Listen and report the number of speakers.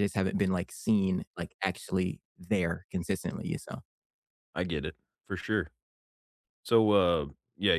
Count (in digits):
2